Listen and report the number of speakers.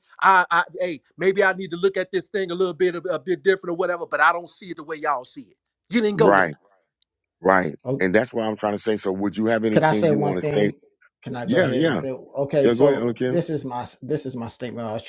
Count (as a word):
three